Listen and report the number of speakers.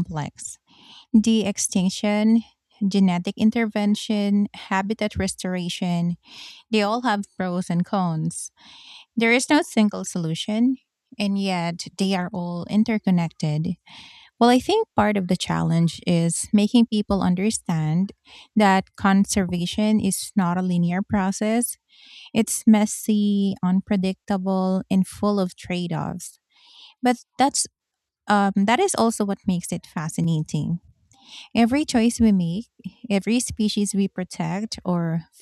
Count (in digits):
1